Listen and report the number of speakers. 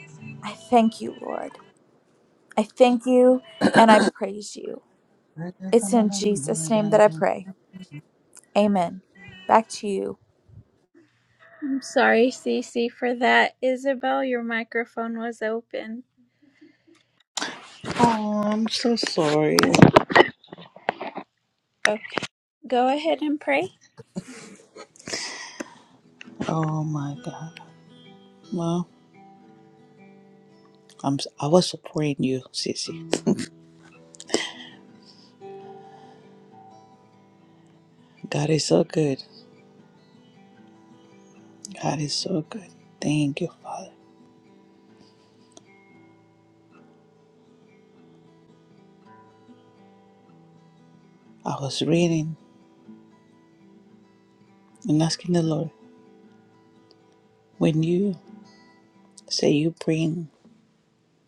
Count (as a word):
three